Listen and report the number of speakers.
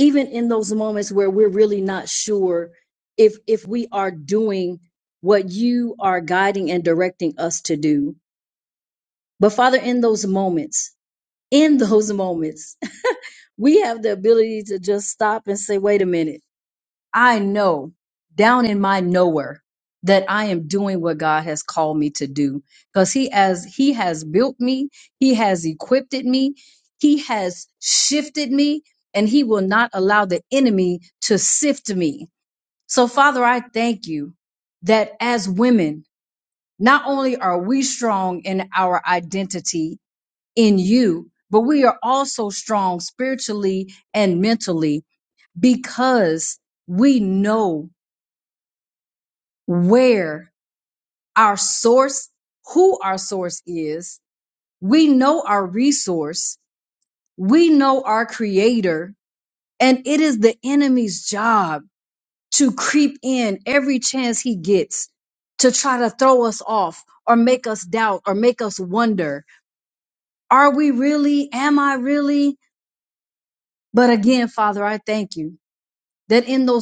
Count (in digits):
1